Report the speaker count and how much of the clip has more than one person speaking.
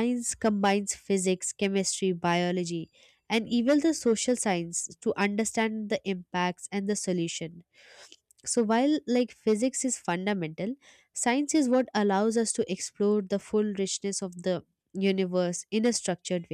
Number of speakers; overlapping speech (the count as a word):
one, no overlap